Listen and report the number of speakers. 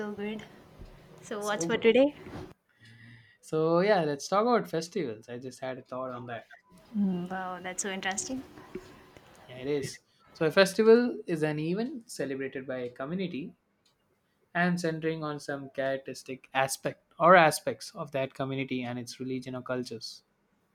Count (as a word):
two